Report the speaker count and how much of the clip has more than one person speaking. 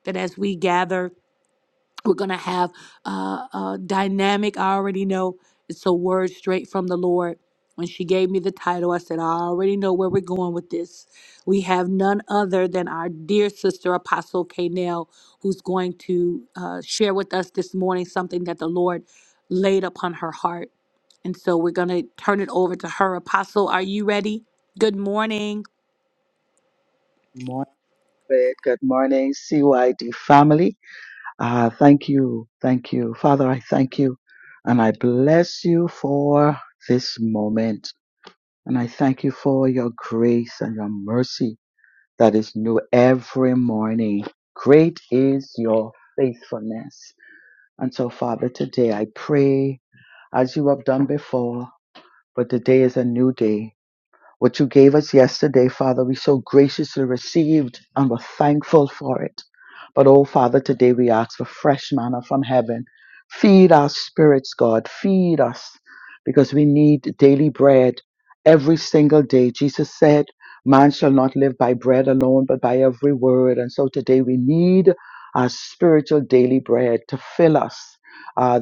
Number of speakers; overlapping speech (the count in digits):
2, no overlap